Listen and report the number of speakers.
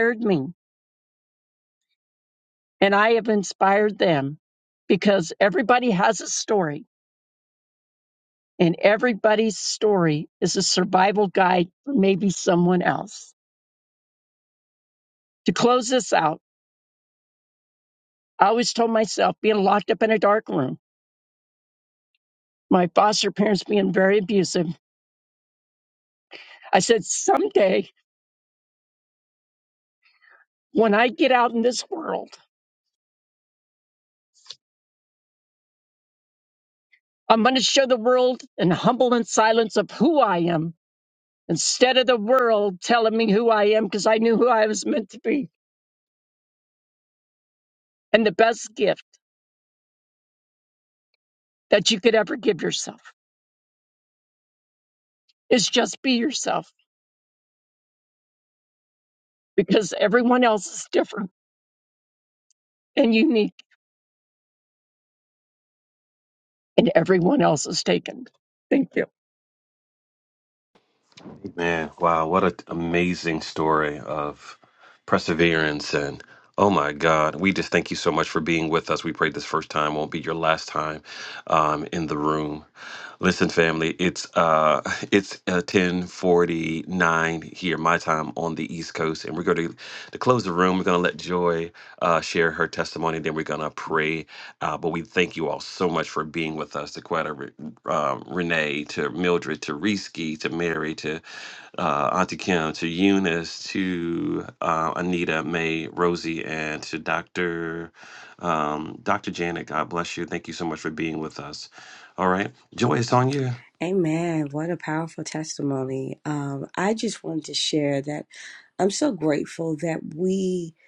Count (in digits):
3